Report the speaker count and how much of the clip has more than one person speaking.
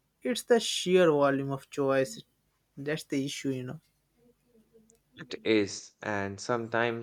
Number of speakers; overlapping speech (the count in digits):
2, no overlap